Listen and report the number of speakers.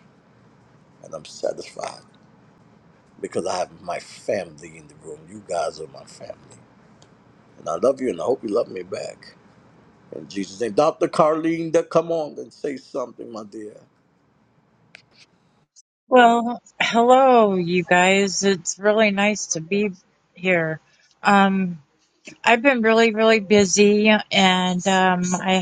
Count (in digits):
2